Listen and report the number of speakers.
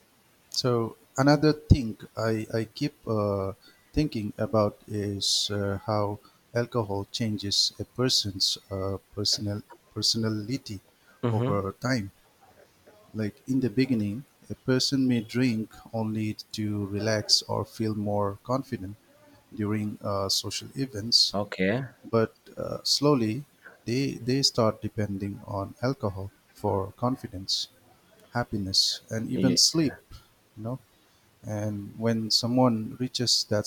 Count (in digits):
2